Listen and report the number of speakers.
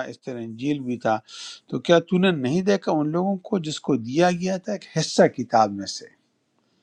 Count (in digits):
1